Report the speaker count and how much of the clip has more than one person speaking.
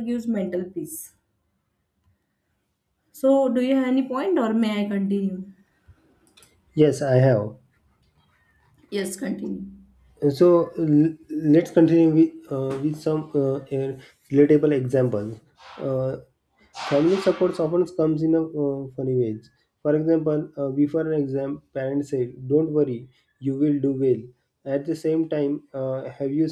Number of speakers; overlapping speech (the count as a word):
two, no overlap